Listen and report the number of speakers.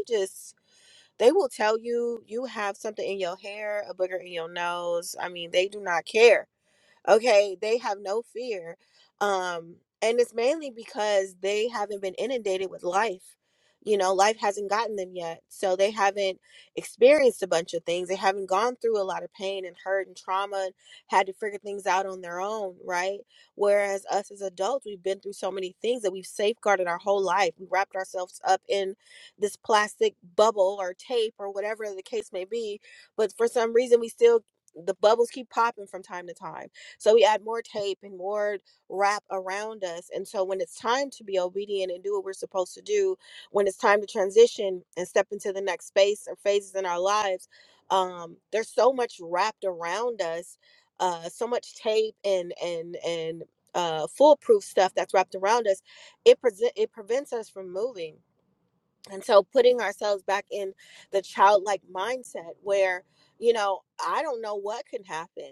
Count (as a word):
one